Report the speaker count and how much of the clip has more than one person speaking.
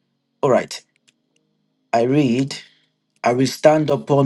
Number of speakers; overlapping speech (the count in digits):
1, no overlap